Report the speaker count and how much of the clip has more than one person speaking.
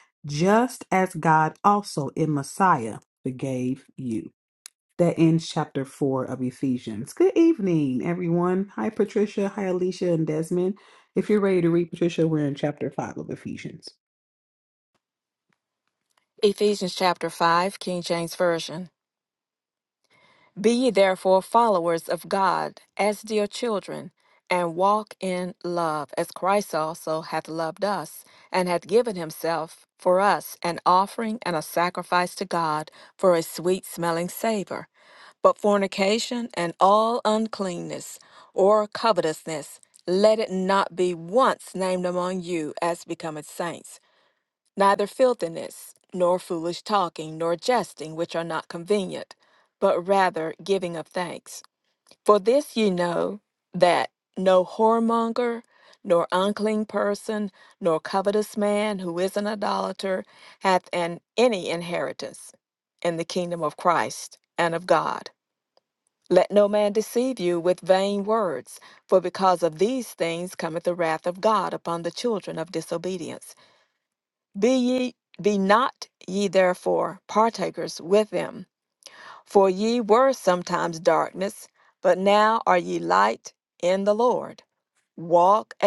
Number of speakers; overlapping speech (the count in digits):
2, no overlap